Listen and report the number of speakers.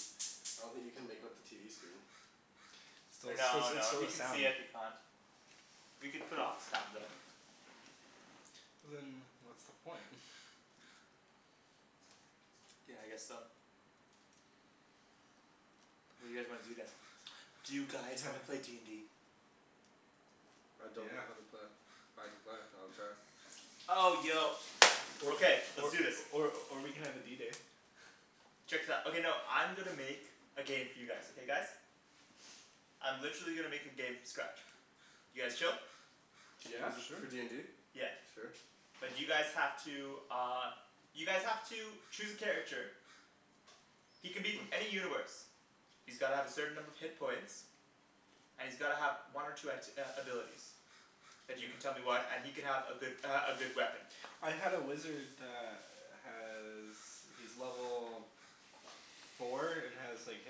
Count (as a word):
three